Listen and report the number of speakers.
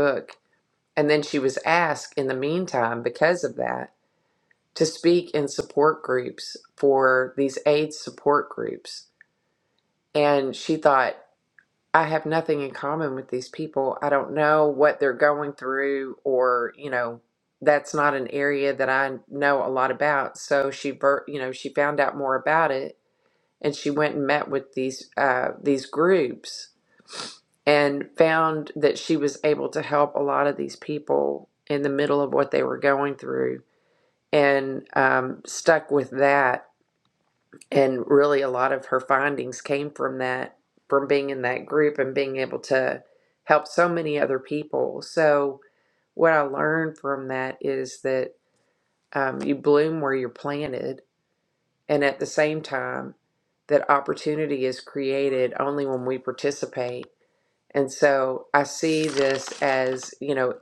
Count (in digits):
1